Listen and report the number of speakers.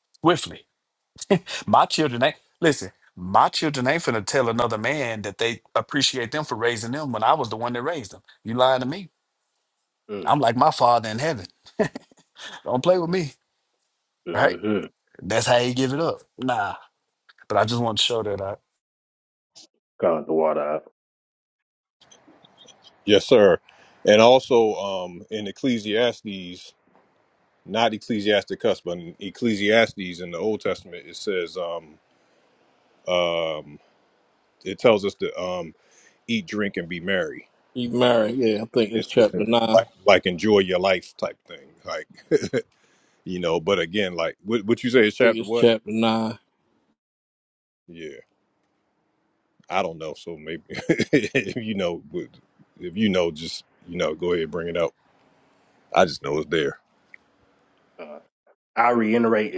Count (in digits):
4